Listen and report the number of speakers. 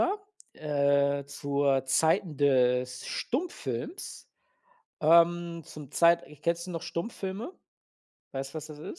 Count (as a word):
one